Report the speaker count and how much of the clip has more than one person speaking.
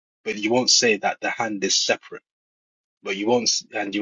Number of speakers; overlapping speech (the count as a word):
one, no overlap